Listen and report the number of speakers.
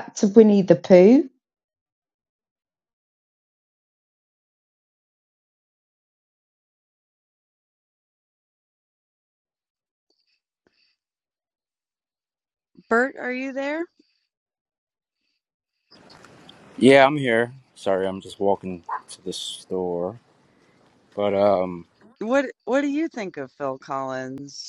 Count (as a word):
three